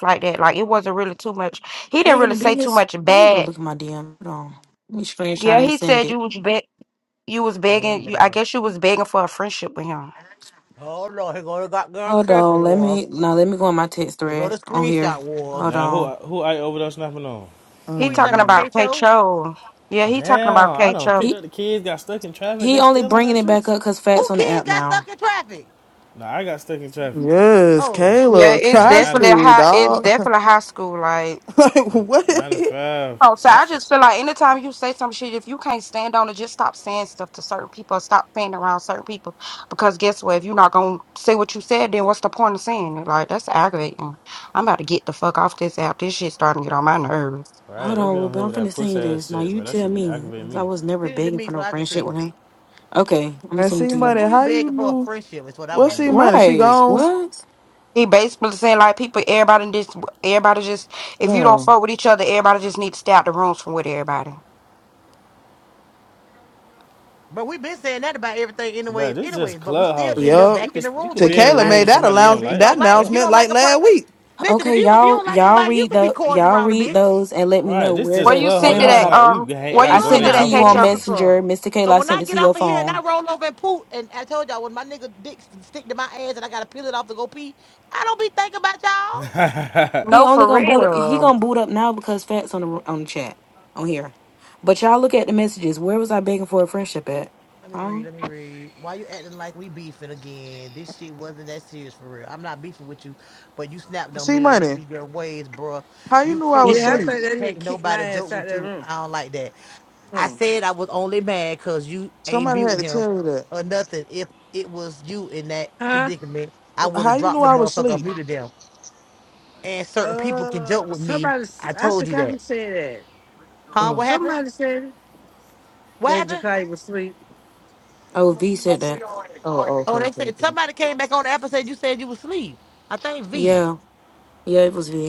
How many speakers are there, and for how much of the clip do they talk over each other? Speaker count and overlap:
6, about 32%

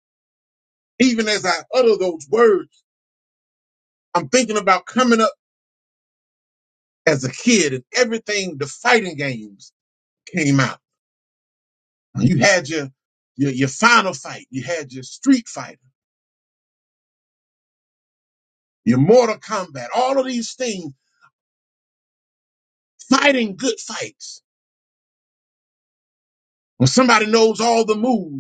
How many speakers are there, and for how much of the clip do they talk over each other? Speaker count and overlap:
1, no overlap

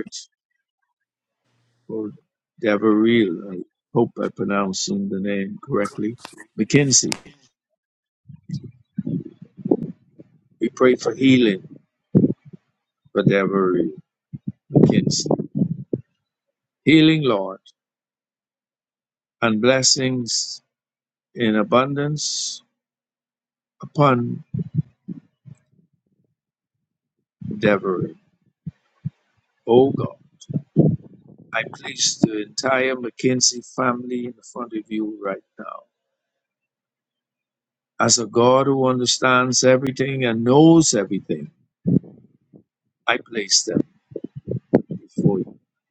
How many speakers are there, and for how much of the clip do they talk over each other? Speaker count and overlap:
1, no overlap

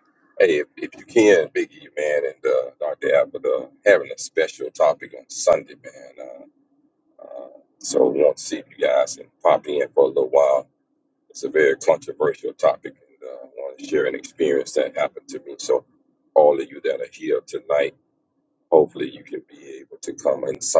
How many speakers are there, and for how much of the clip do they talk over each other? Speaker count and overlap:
1, no overlap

